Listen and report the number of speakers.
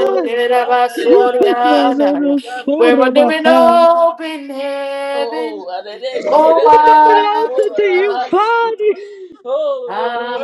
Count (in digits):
3